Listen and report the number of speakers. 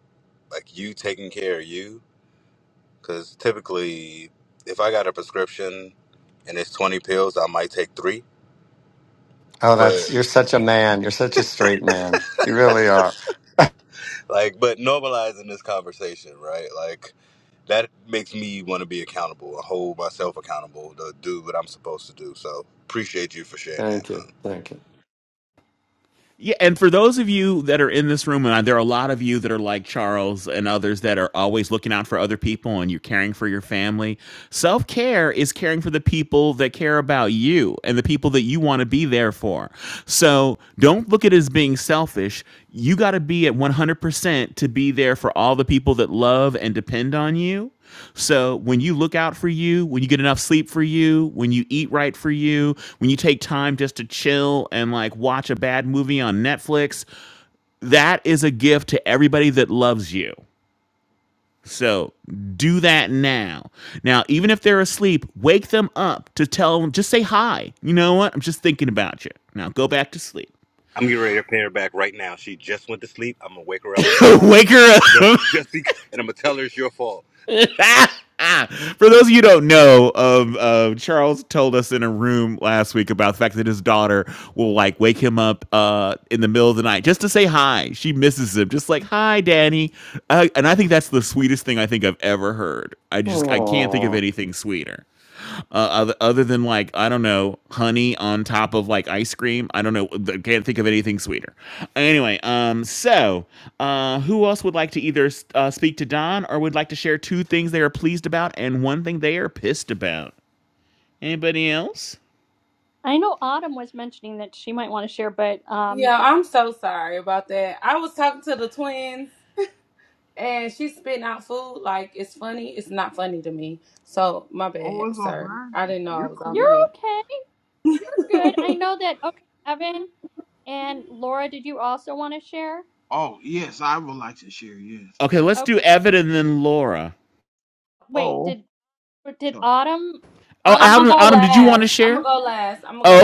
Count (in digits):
6